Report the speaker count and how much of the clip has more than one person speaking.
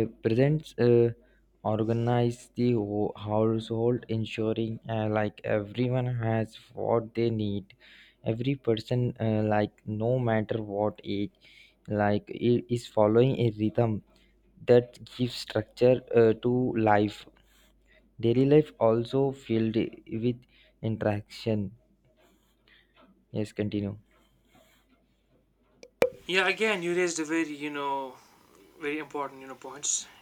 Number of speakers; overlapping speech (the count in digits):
2, no overlap